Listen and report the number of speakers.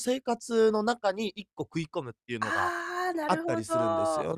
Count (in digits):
2